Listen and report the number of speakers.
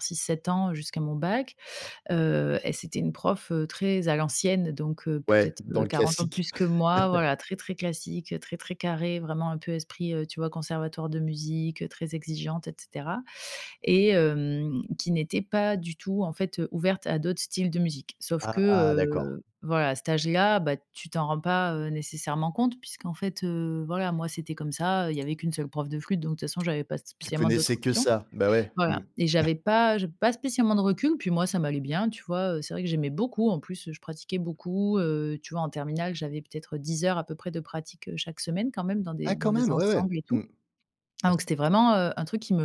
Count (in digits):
2